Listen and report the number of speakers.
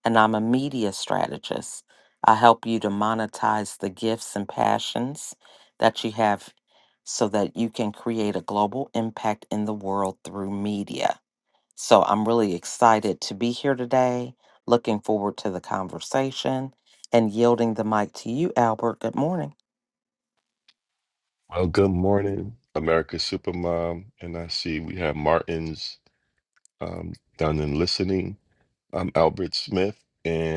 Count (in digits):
2